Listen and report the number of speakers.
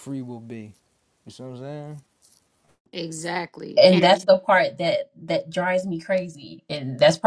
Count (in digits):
3